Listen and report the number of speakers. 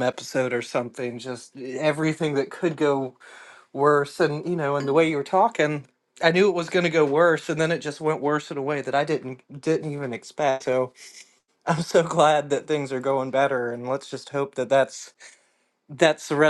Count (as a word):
one